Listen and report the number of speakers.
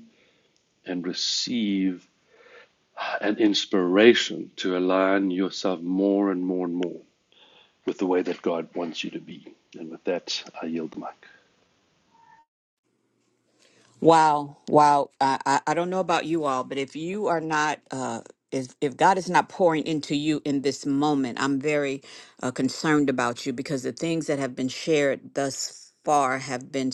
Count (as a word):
two